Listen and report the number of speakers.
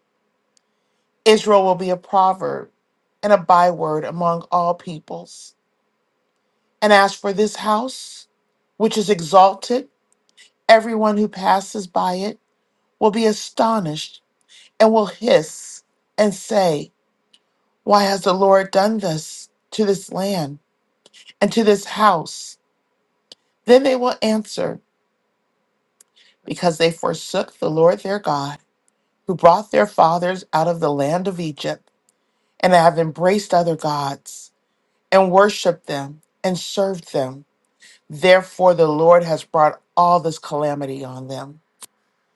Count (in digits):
1